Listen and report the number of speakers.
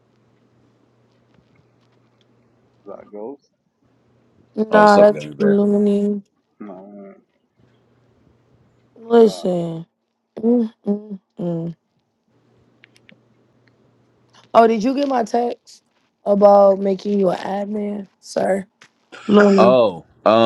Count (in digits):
3